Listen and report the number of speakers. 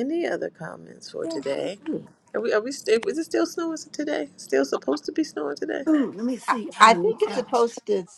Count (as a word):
three